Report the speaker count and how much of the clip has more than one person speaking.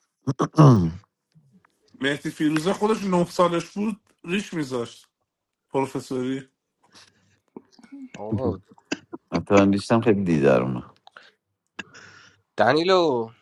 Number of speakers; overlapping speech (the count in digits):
3, no overlap